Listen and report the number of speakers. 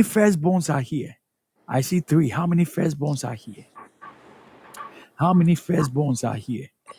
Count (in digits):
1